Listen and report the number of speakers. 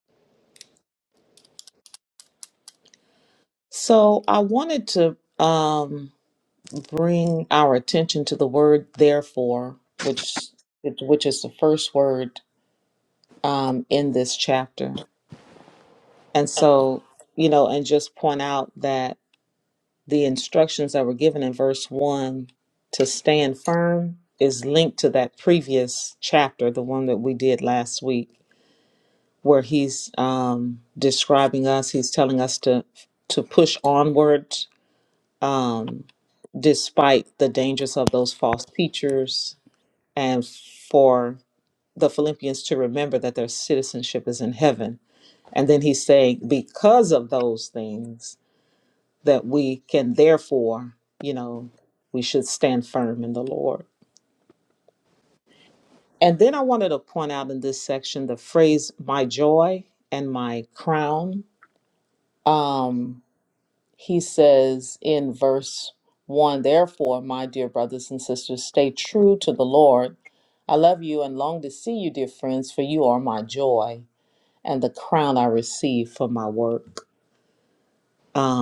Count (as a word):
one